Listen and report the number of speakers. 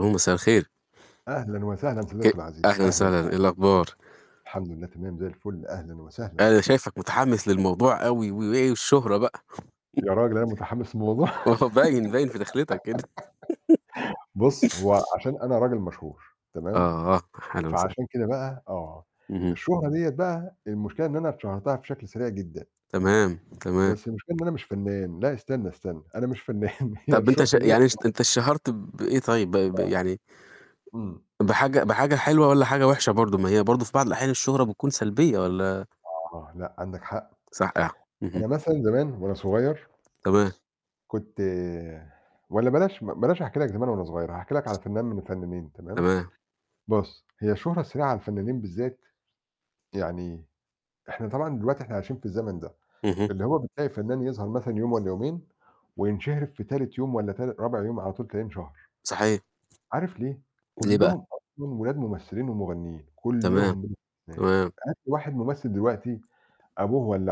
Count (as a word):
two